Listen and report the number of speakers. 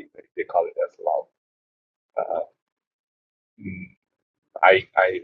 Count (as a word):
one